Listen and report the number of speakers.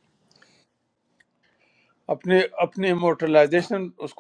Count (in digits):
1